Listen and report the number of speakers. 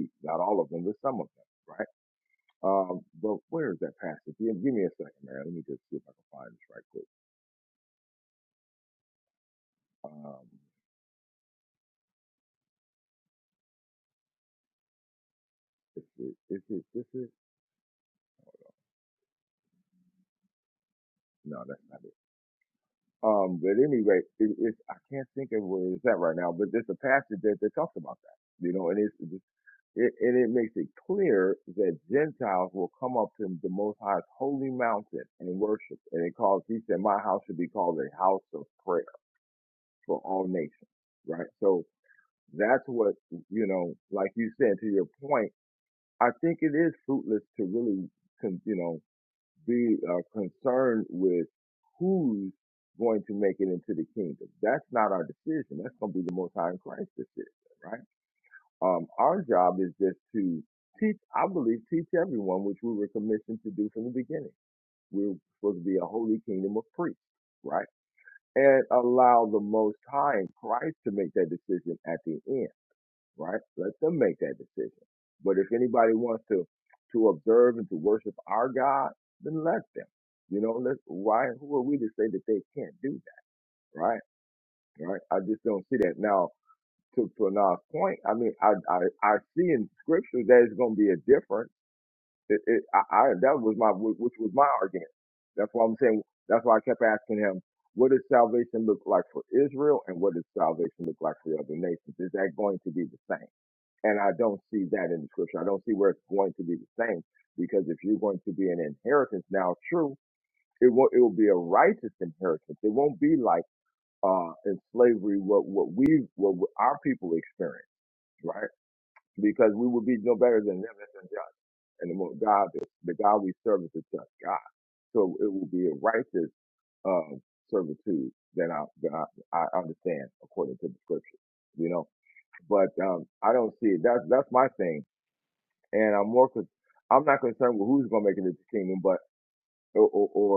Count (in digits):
1